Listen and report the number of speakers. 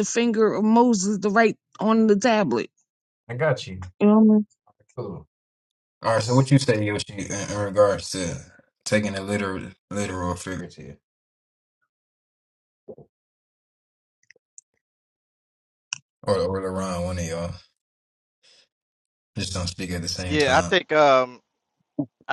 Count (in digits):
3